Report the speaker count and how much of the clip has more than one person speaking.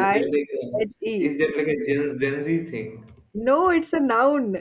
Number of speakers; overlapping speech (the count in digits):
2, about 22%